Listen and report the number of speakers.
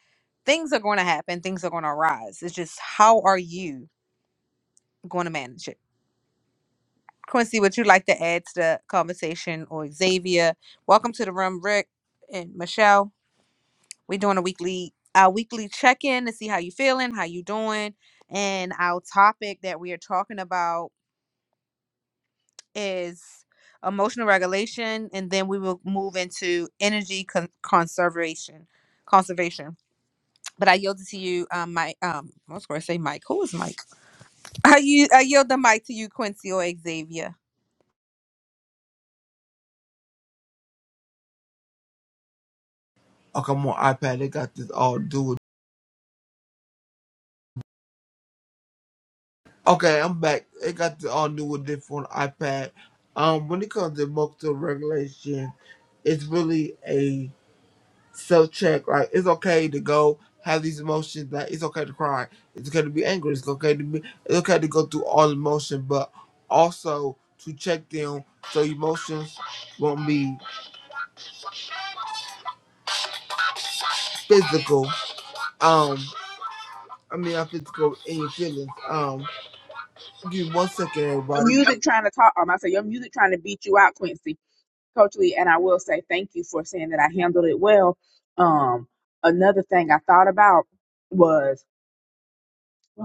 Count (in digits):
3